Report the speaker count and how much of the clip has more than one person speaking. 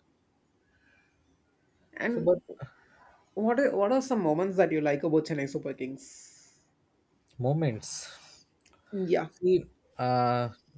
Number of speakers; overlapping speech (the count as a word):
two, about 1%